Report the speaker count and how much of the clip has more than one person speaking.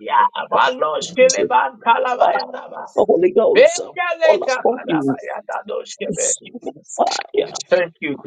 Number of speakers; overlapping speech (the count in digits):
2, about 8%